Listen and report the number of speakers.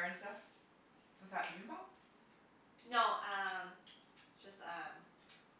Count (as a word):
two